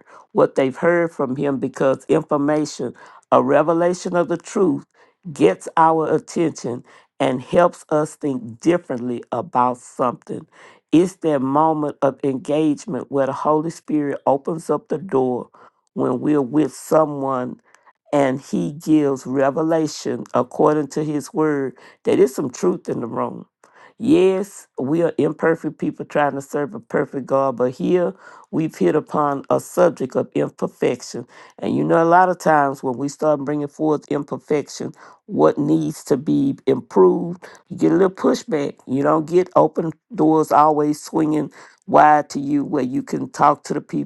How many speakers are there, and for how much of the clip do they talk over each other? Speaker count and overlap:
1, no overlap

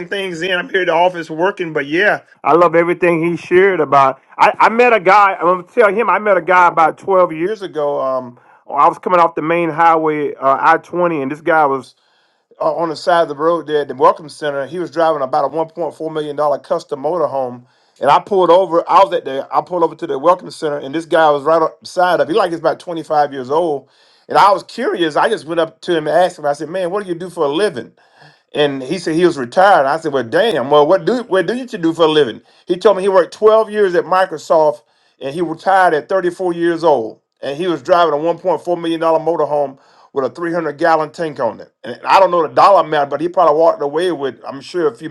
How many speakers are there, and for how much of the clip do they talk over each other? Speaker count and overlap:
1, no overlap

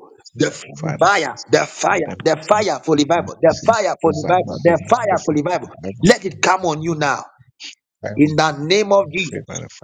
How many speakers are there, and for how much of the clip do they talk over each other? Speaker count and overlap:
2, about 32%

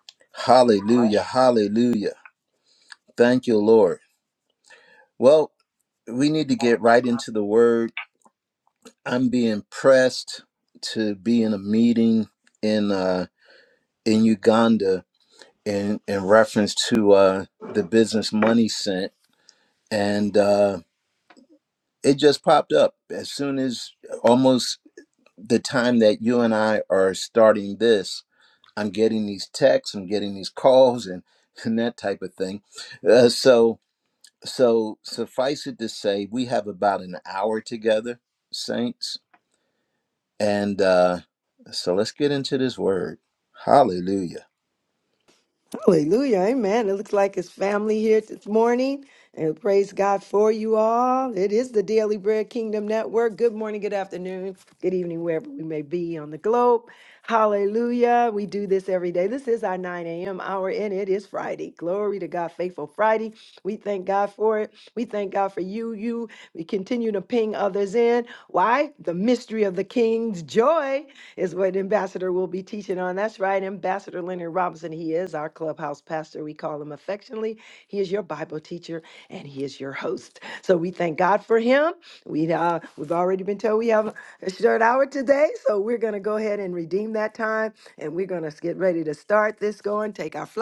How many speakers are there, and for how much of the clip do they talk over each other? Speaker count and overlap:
2, no overlap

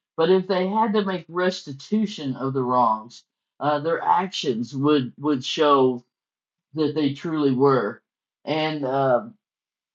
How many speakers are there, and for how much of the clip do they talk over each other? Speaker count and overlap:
1, no overlap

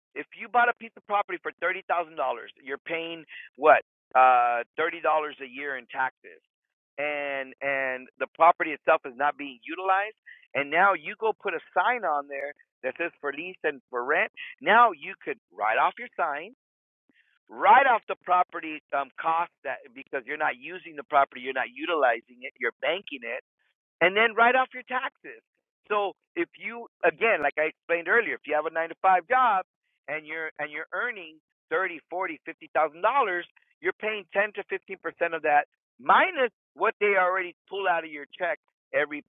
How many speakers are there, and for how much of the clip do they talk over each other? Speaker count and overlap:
1, no overlap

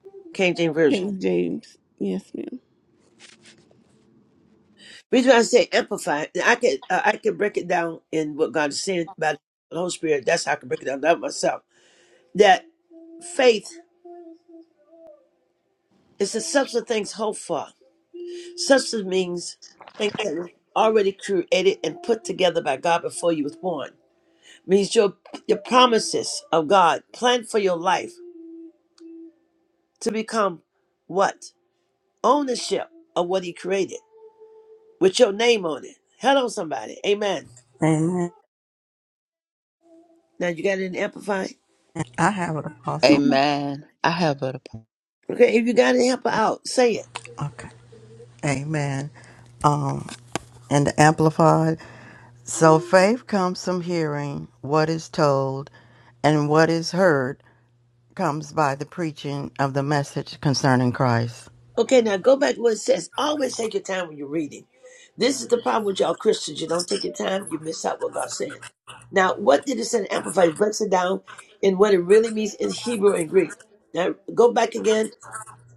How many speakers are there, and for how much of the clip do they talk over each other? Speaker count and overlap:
4, about 1%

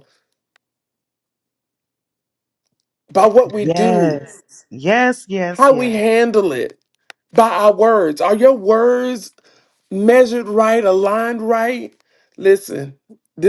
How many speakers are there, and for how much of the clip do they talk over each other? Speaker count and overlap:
2, about 7%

